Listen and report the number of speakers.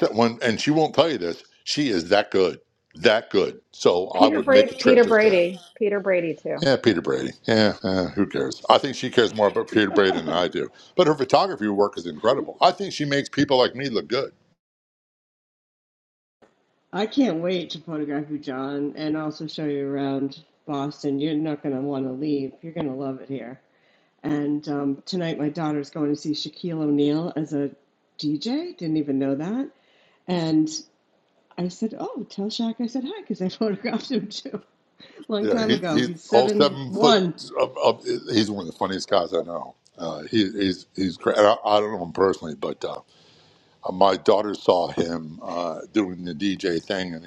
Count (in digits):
3